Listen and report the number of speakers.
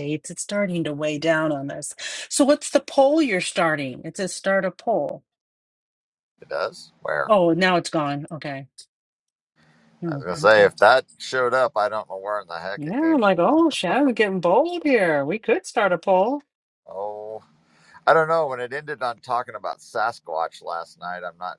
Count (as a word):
two